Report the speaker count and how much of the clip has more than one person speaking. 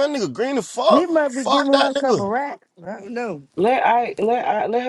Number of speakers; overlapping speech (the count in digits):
3, about 20%